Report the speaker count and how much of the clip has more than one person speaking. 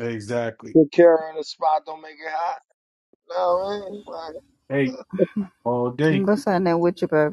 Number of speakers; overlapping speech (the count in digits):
3, about 2%